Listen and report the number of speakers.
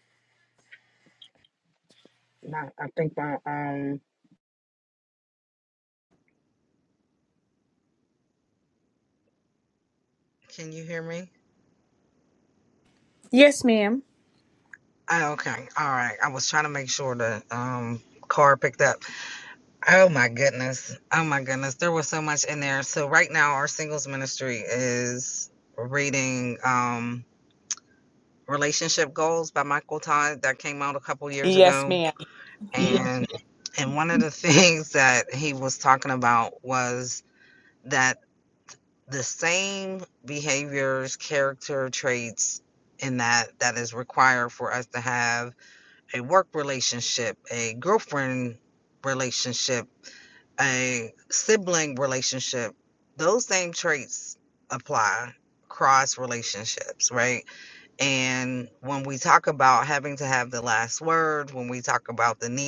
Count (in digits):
2